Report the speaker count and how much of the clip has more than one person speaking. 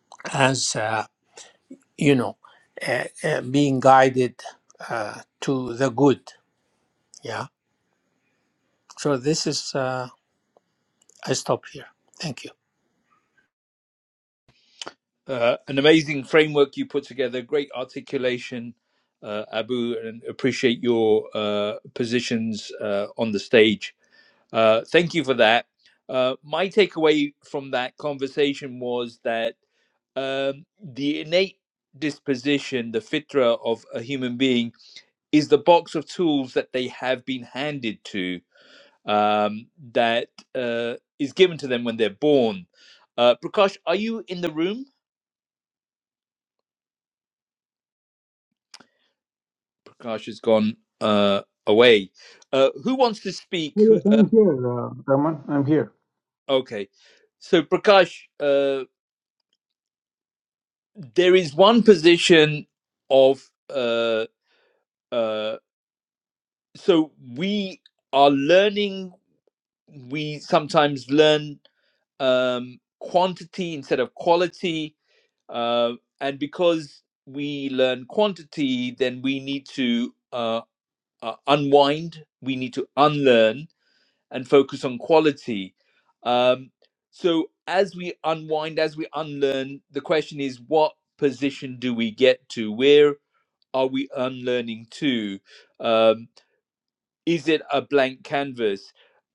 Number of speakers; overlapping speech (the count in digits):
3, about 1%